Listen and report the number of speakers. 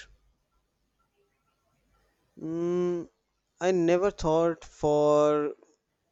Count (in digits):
1